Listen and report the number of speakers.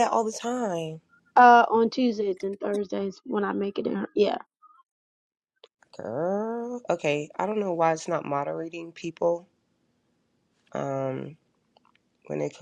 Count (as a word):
two